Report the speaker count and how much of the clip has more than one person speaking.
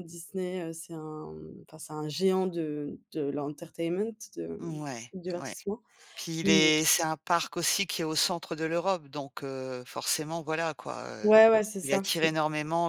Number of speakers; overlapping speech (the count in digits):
2, about 10%